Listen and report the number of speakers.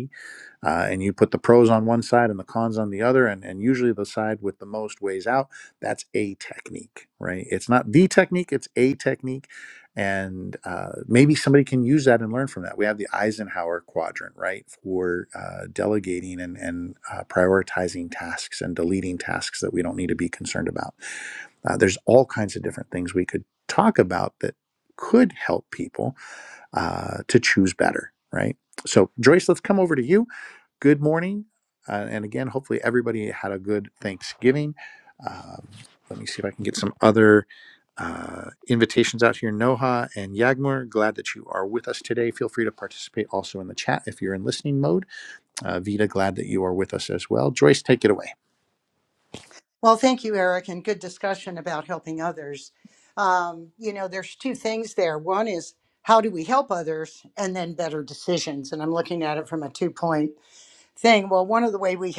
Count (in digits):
2